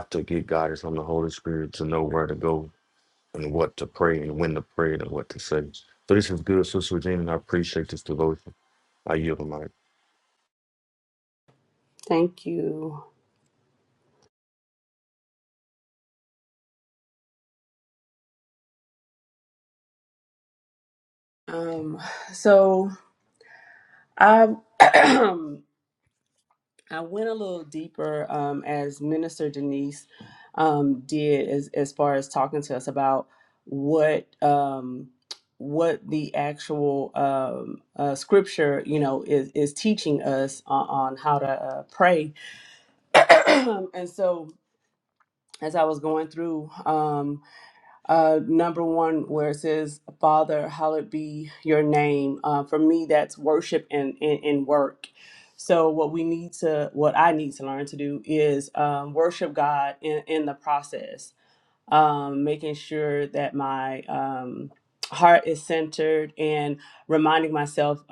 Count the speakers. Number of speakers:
2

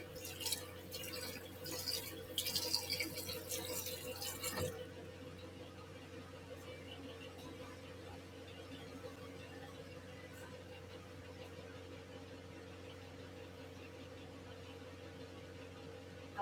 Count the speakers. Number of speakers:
0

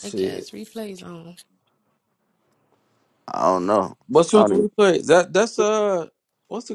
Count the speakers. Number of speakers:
3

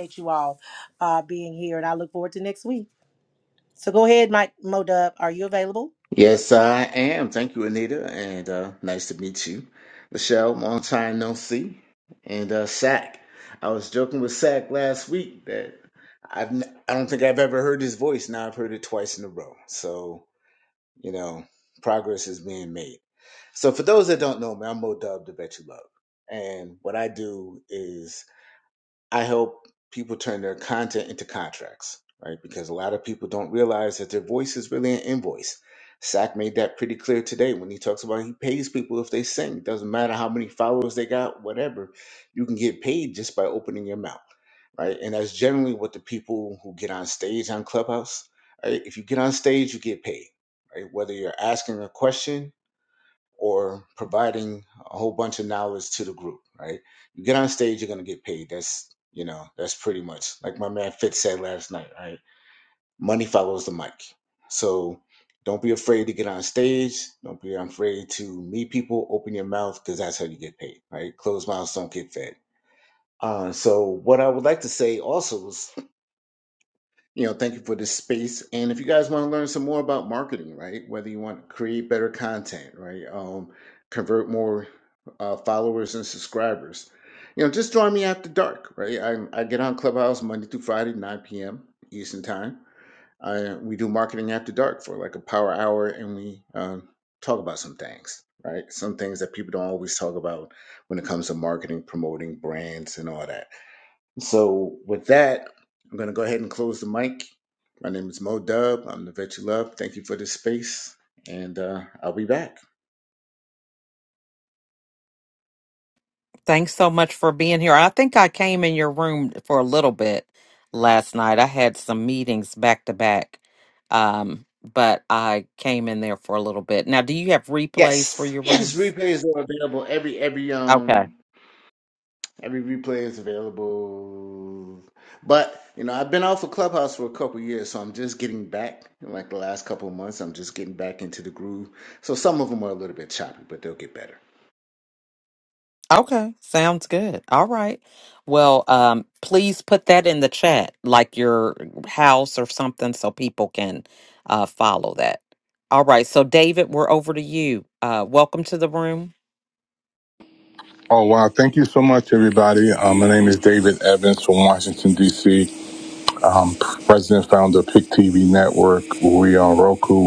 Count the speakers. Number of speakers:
4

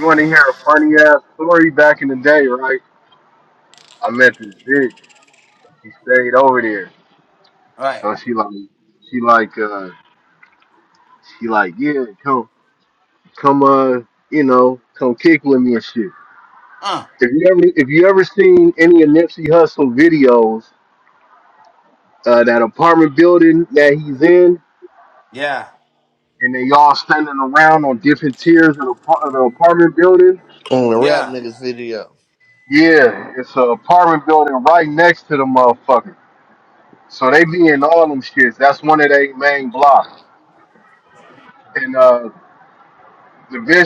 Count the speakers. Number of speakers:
3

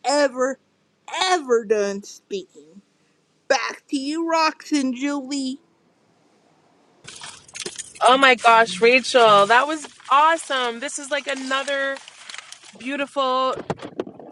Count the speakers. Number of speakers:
2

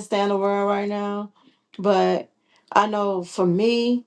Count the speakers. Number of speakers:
1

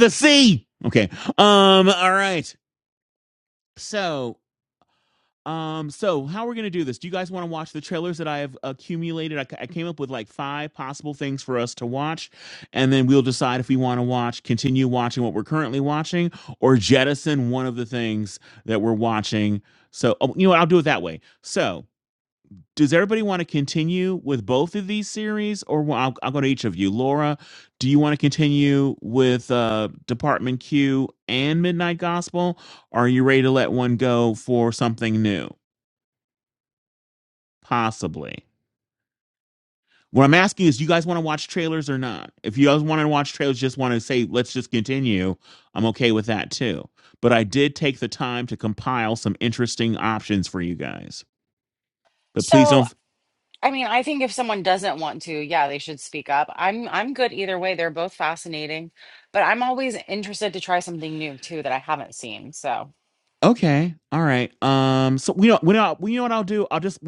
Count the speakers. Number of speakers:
2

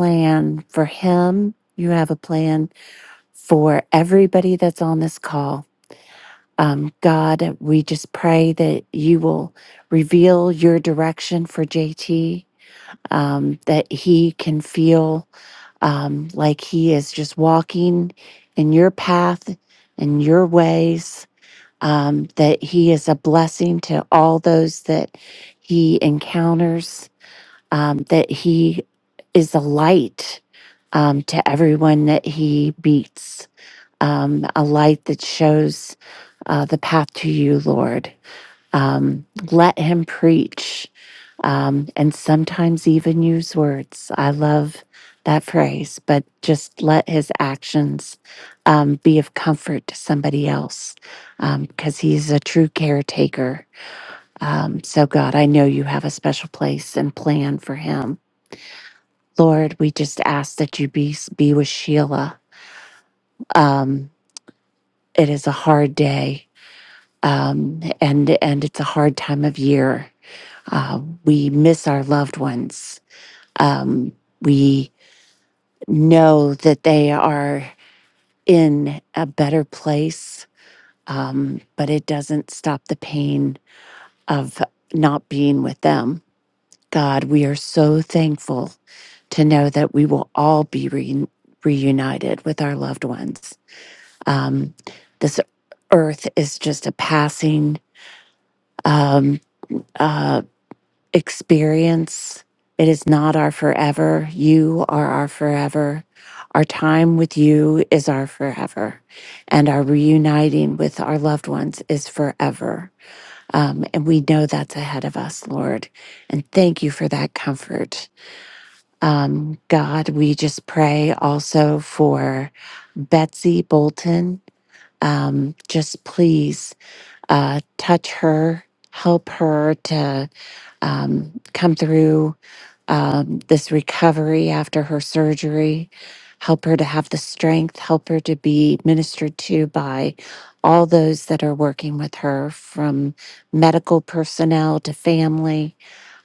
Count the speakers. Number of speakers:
1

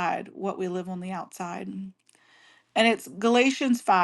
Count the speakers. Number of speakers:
1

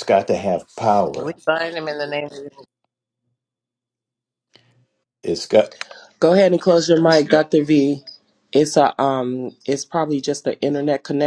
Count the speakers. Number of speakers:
3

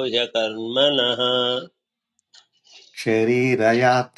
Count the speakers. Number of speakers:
2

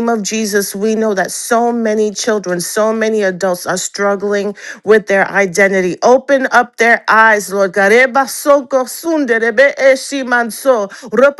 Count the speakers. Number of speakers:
1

